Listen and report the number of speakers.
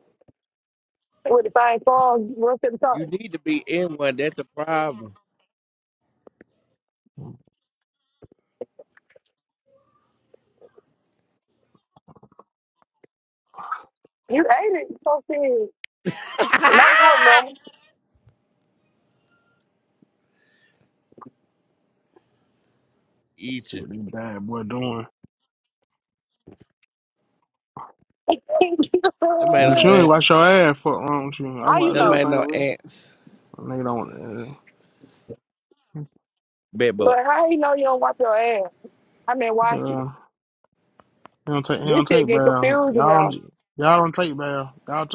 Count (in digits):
3